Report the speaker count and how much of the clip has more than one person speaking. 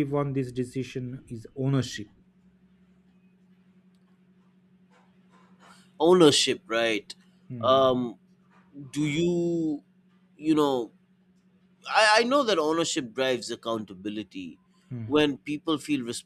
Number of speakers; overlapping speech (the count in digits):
2, about 1%